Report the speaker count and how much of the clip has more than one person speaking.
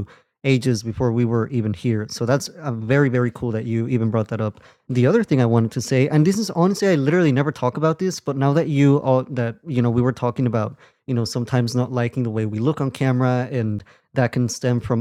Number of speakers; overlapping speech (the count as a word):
one, no overlap